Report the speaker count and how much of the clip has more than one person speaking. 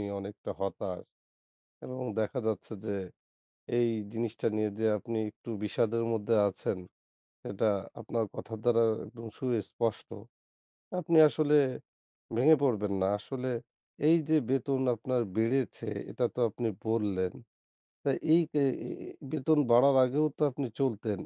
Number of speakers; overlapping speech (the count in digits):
1, no overlap